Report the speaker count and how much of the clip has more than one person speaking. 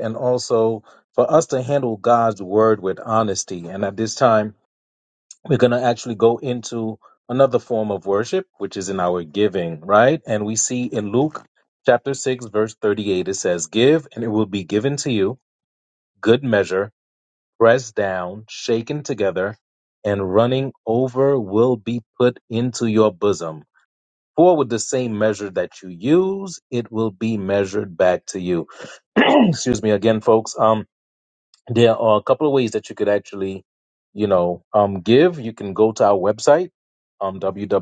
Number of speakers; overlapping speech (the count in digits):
1, no overlap